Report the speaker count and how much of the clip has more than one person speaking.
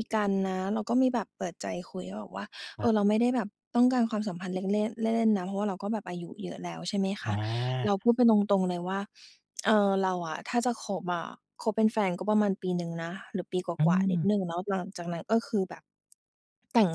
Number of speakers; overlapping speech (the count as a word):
two, about 4%